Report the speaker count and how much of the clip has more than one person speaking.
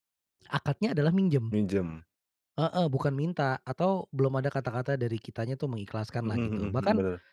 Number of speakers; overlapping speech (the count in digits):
2, about 11%